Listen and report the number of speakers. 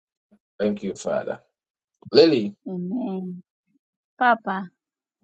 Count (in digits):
2